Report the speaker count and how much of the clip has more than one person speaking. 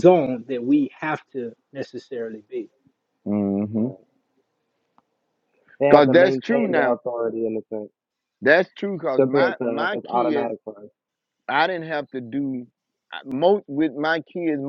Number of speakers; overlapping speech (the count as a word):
three, about 17%